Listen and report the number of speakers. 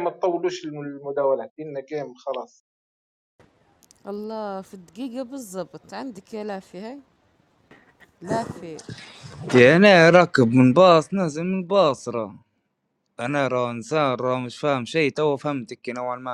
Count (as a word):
three